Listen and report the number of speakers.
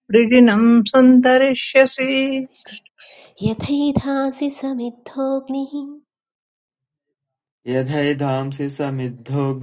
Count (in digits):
3